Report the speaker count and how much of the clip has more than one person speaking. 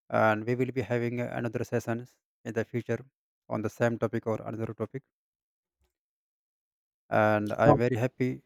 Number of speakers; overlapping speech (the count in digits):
1, no overlap